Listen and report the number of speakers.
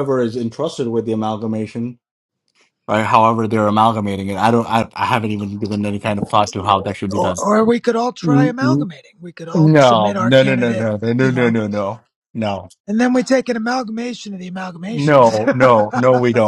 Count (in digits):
2